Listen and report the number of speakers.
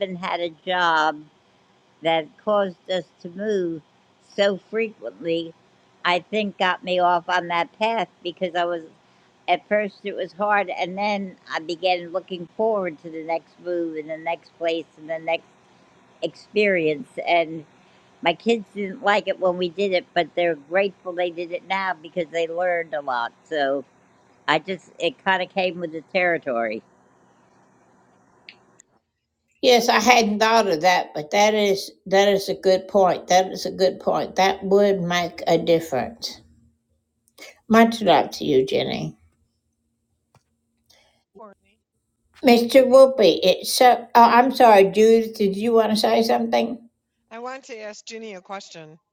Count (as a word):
three